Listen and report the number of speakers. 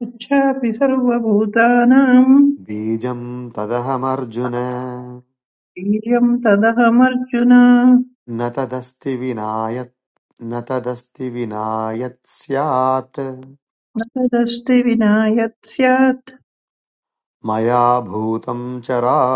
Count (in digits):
2